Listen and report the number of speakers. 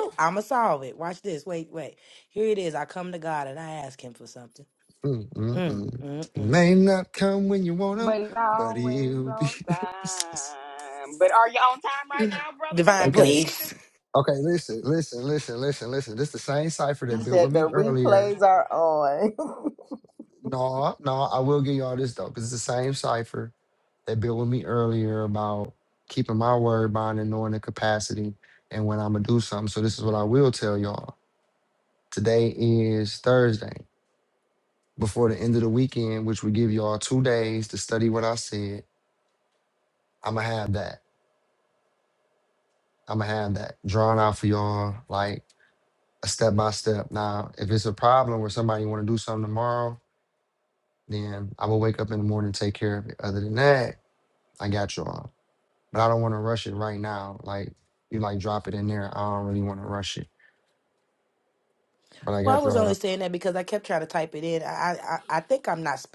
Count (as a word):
four